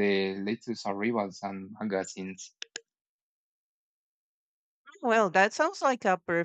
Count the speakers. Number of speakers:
2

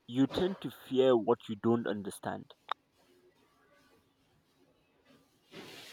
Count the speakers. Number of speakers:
1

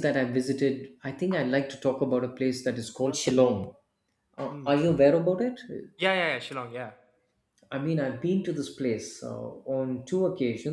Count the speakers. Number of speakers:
2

